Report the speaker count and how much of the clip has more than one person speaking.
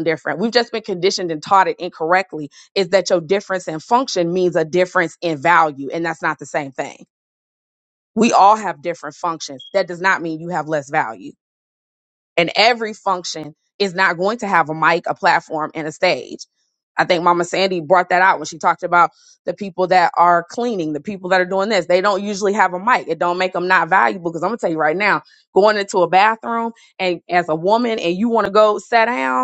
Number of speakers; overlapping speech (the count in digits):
1, no overlap